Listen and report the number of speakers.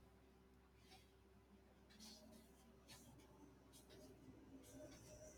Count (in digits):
0